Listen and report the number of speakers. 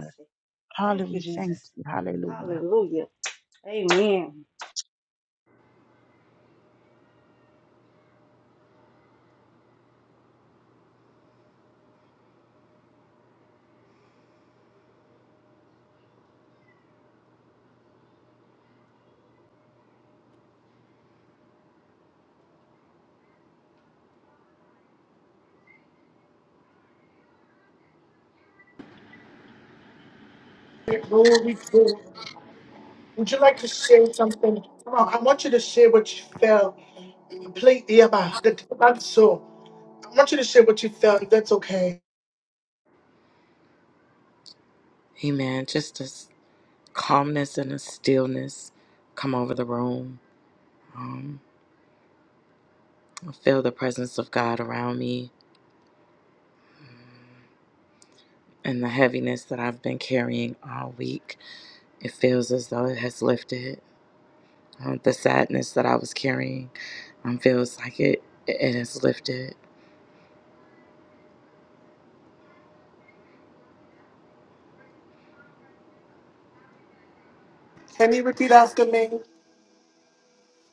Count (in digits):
4